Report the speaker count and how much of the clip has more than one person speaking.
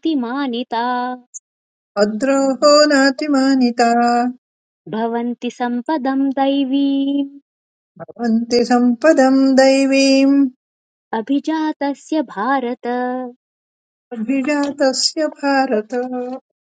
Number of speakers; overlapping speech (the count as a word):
two, no overlap